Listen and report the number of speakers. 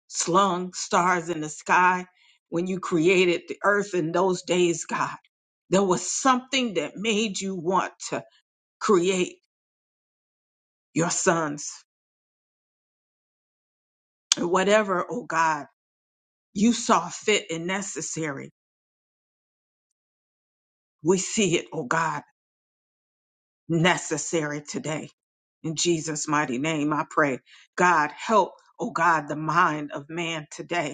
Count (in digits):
1